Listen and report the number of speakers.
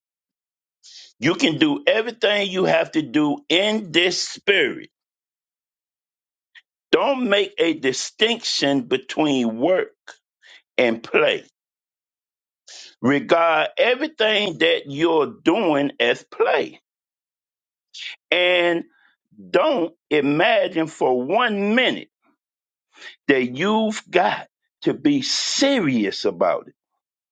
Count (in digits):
1